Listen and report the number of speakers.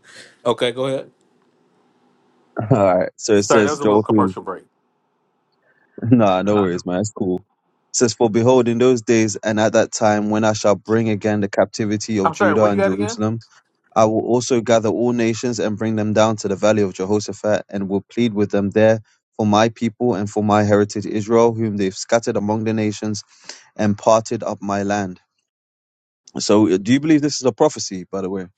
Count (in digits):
2